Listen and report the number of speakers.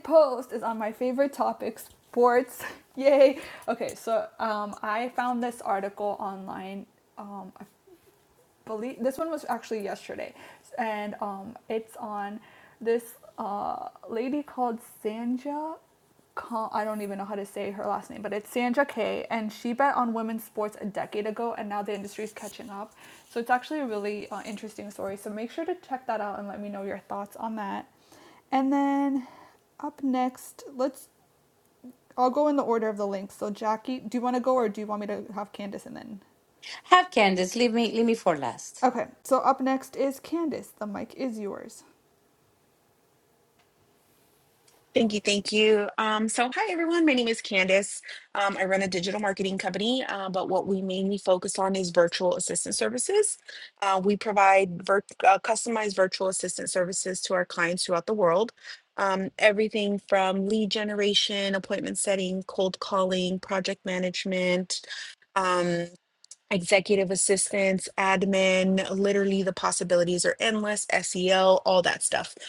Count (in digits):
3